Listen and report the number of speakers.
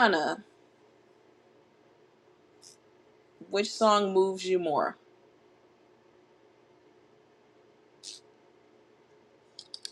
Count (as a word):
one